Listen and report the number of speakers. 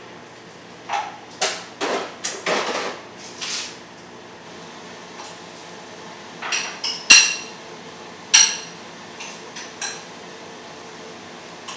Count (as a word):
zero